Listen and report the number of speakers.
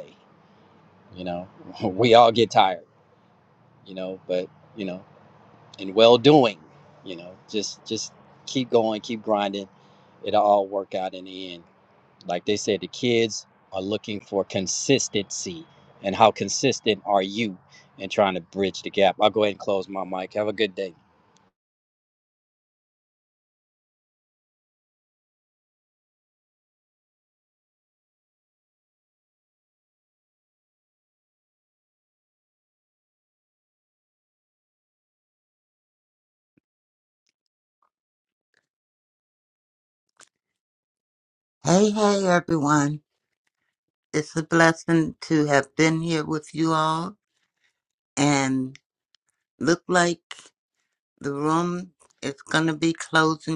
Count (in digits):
2